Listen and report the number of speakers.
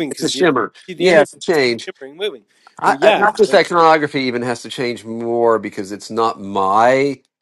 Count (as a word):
two